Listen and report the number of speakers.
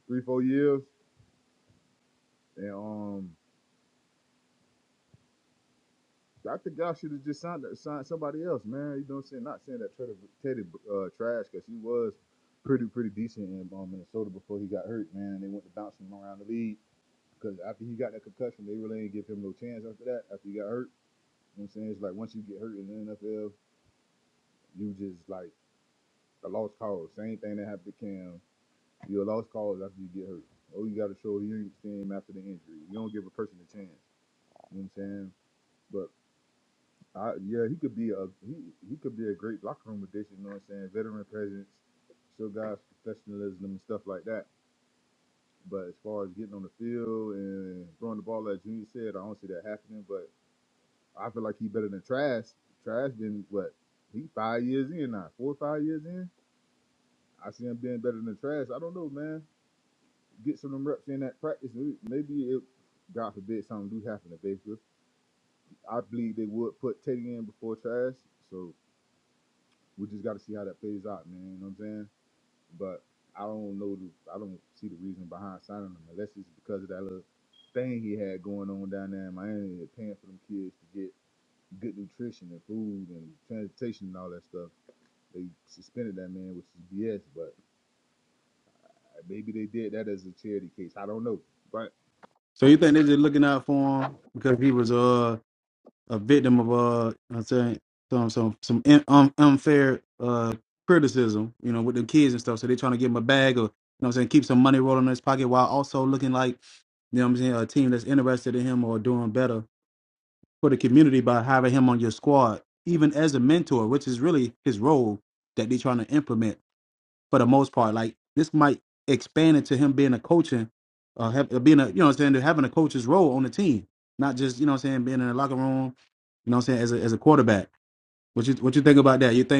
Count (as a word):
two